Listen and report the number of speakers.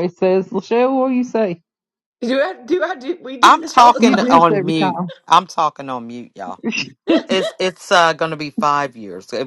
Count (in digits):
3